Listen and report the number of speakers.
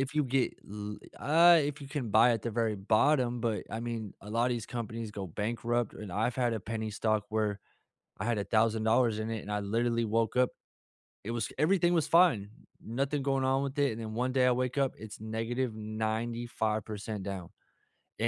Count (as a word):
one